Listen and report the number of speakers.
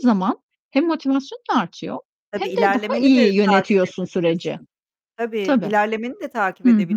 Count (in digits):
2